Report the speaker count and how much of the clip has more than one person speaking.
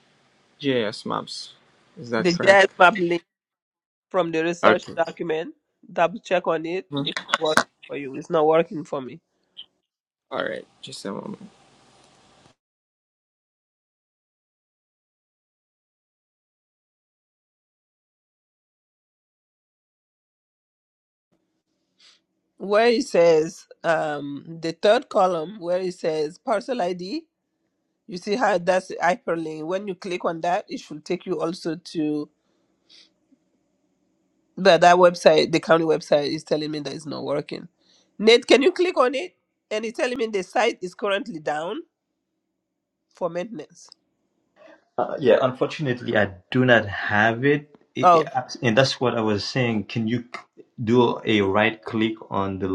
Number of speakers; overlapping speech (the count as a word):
three, about 2%